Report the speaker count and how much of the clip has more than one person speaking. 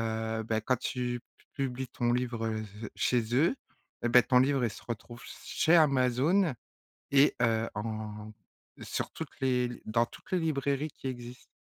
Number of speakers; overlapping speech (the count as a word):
one, no overlap